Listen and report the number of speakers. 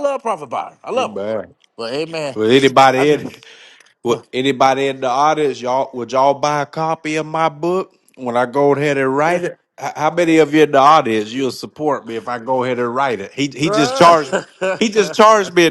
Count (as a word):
two